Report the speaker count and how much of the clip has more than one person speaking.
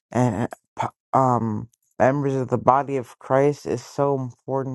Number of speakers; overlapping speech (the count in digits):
1, no overlap